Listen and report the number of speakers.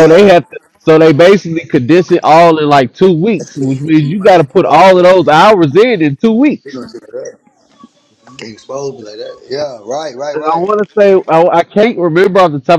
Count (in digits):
2